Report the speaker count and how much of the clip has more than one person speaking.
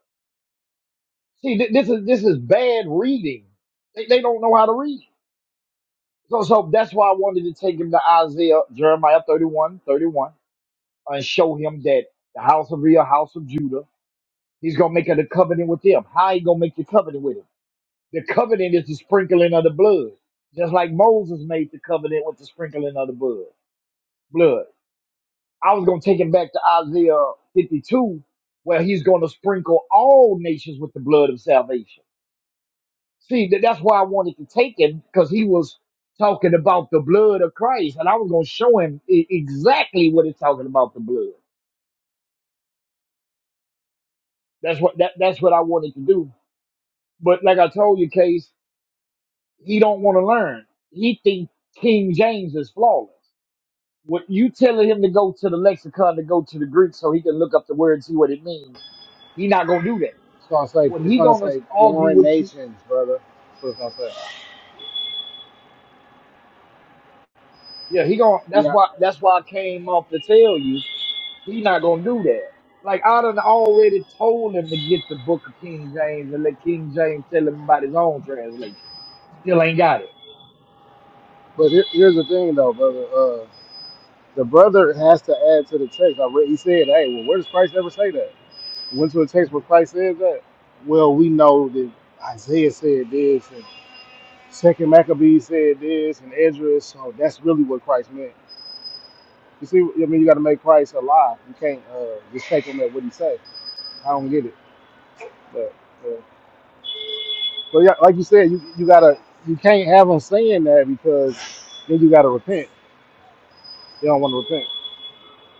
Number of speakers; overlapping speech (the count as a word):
two, about 2%